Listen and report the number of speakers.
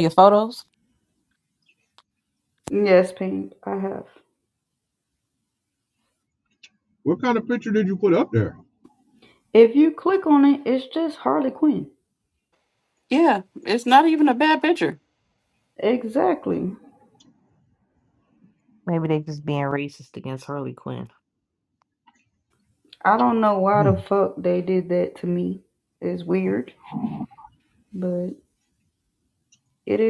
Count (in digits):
4